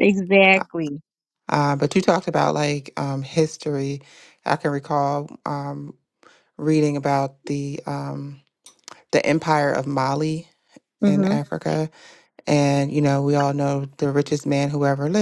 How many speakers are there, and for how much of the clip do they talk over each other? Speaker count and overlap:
two, about 3%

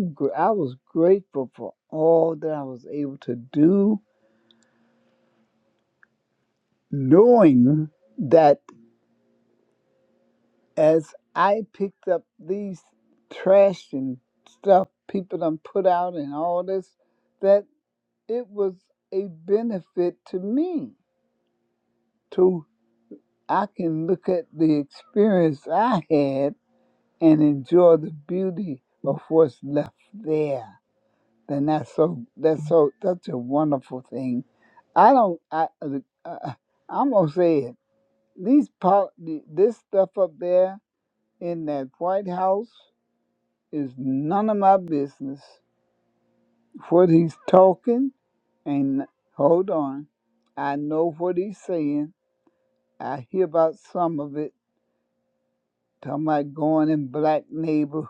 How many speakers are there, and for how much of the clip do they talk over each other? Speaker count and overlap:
one, no overlap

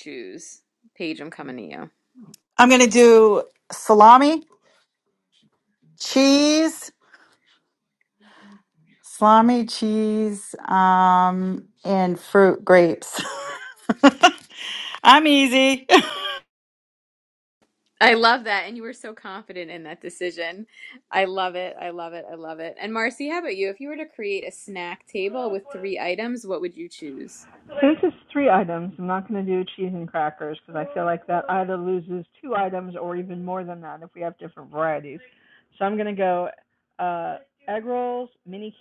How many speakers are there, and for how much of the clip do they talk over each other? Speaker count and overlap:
three, no overlap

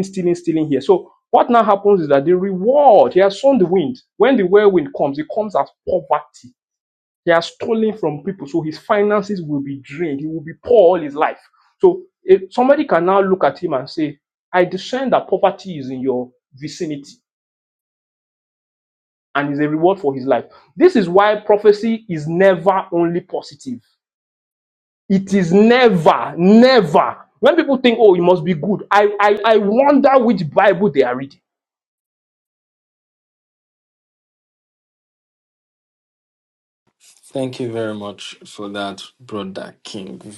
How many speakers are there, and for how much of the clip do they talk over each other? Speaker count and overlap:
two, no overlap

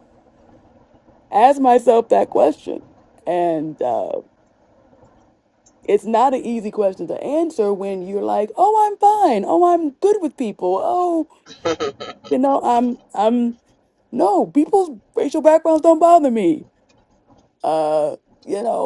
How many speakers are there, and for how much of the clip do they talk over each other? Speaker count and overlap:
one, no overlap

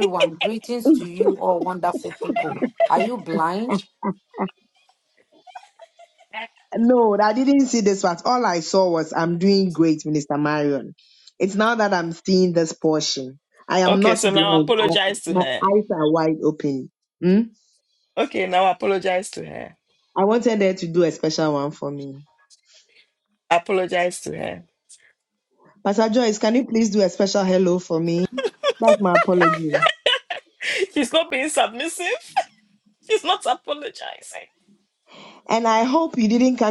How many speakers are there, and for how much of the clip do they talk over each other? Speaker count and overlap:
three, about 4%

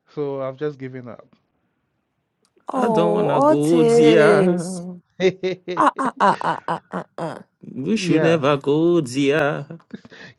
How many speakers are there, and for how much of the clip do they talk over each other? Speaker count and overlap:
three, about 22%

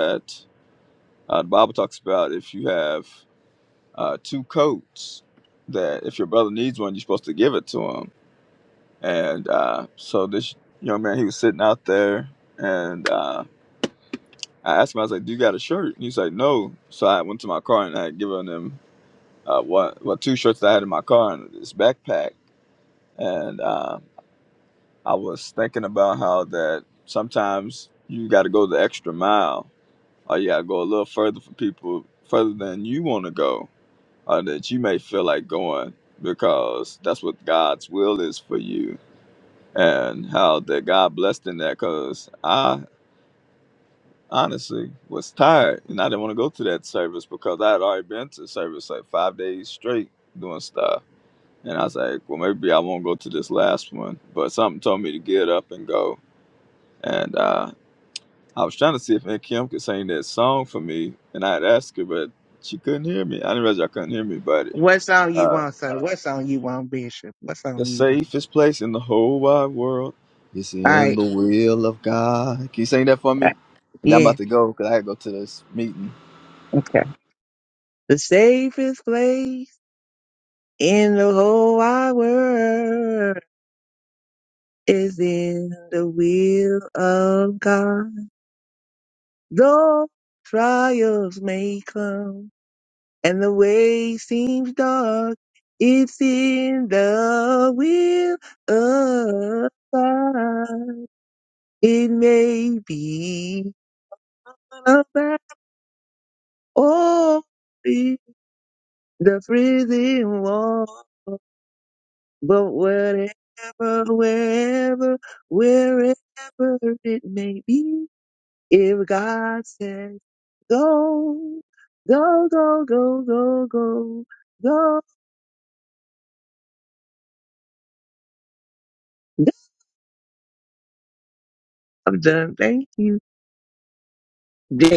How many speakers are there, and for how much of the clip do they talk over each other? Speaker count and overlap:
two, about 1%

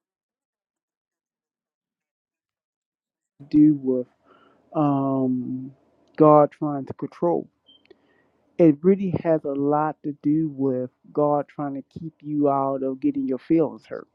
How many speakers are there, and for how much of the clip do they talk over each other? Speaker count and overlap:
one, no overlap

